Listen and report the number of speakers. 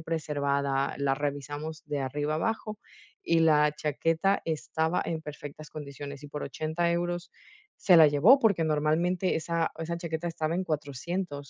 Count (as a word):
one